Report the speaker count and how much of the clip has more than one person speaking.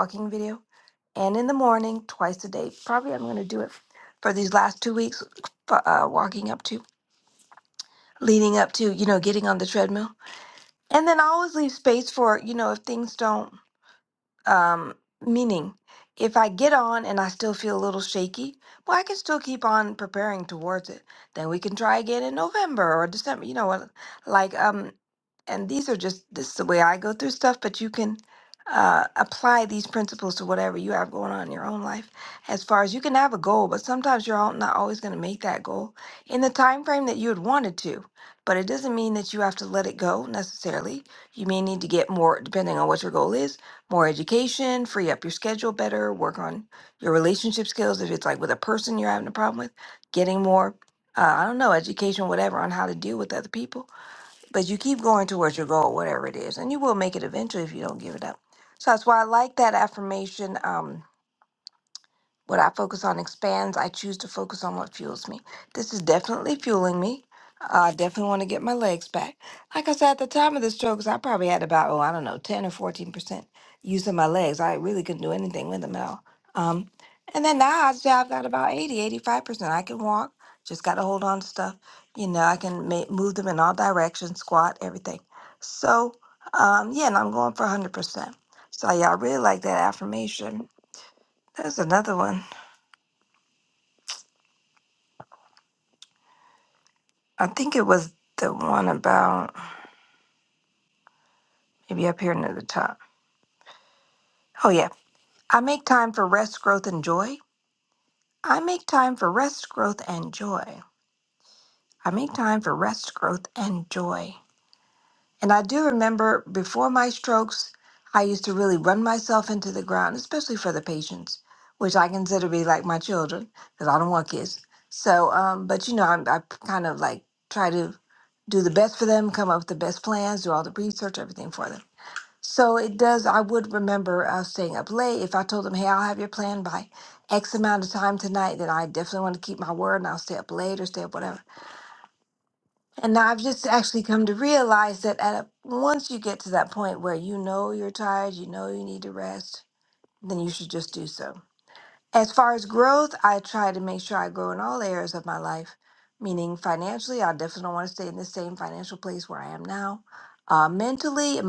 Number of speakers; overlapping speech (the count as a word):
one, no overlap